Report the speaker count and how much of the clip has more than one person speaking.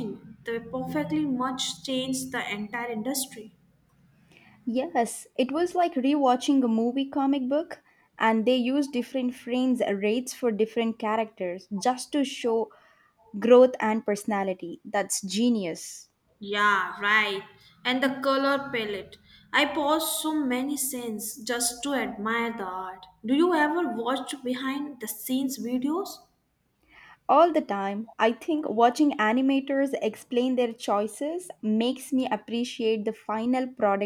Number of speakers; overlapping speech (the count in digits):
2, no overlap